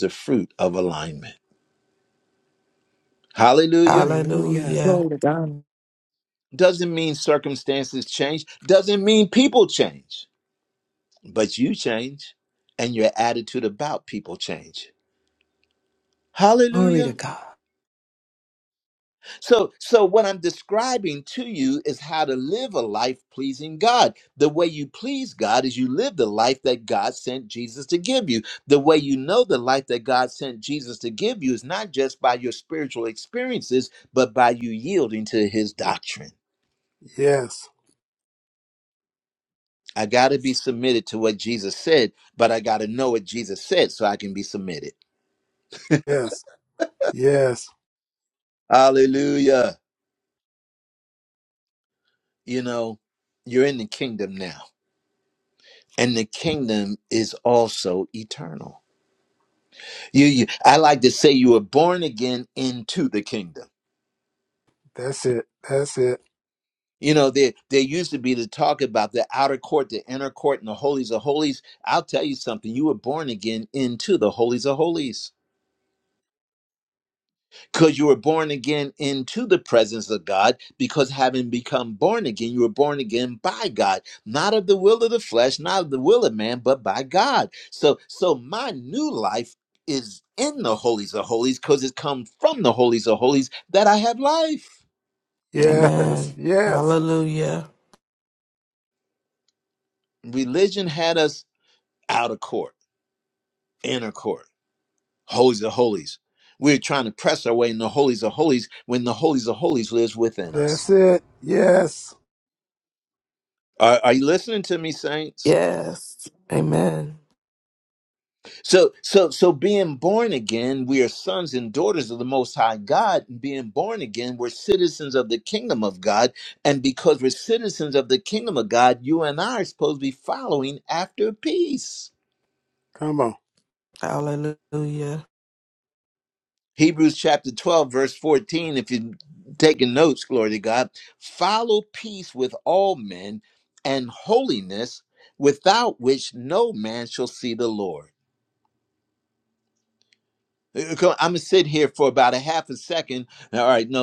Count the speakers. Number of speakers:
4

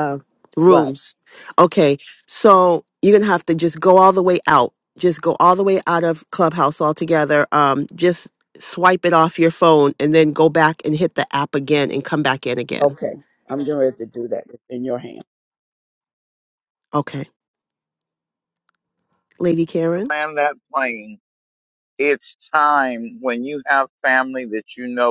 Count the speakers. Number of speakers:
3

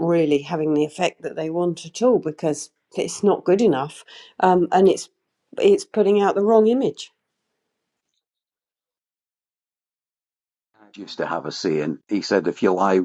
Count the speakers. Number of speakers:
2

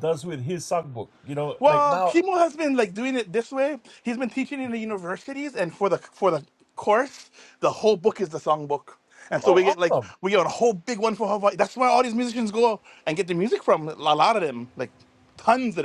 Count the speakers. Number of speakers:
2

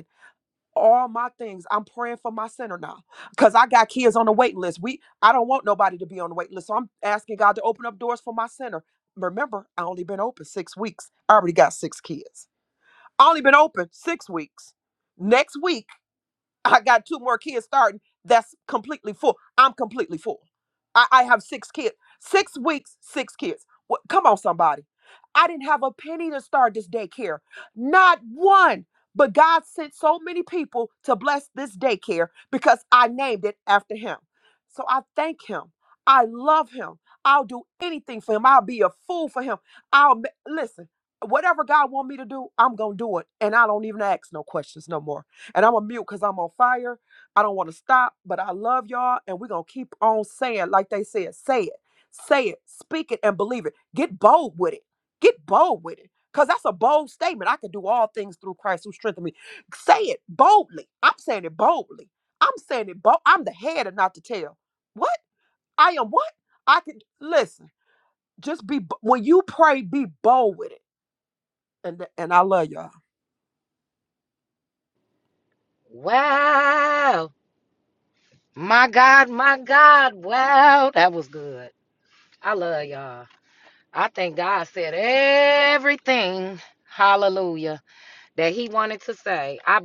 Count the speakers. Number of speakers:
2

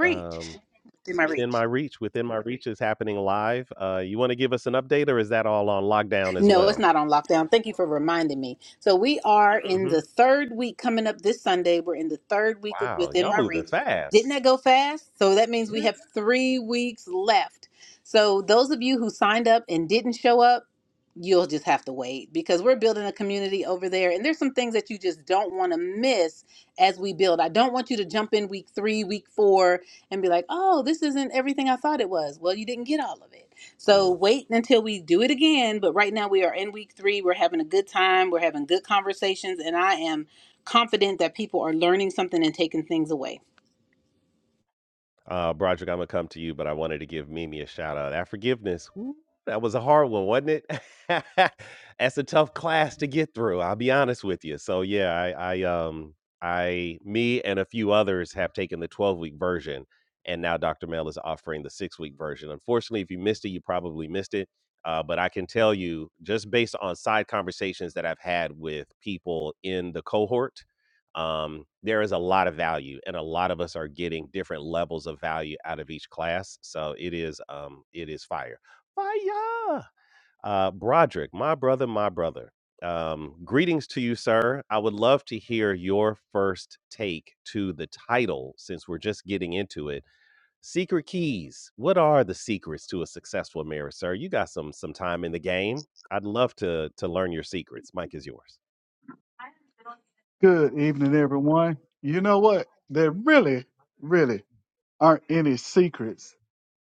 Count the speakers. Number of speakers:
3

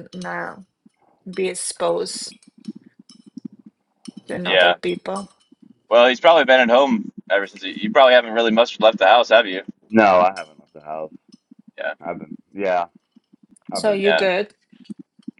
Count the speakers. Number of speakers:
3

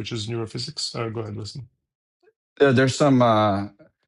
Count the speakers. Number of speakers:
2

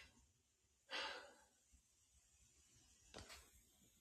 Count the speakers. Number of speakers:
0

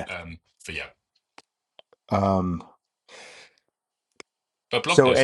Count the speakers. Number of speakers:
2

